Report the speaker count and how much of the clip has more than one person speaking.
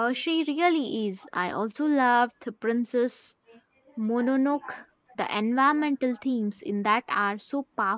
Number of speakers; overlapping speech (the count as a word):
one, no overlap